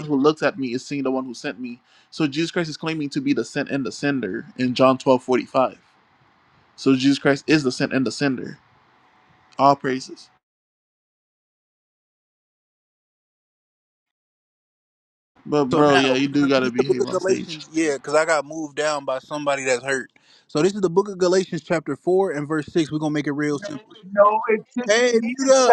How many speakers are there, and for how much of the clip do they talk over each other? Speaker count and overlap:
3, about 11%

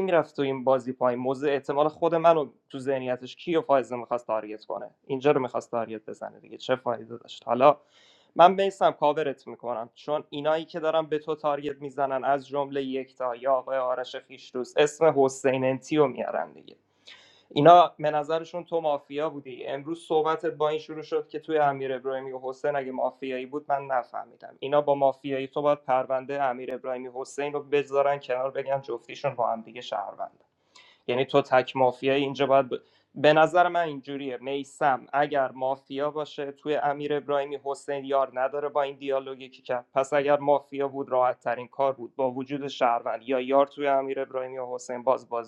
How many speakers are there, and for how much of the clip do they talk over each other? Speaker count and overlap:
1, no overlap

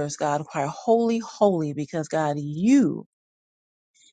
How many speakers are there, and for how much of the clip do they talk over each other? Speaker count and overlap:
1, no overlap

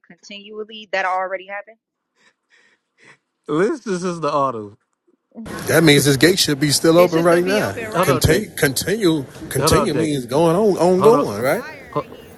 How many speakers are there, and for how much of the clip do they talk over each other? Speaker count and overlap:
3, about 21%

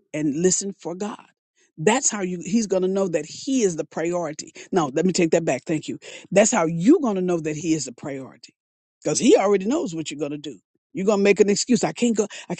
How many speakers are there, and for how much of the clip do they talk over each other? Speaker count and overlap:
1, no overlap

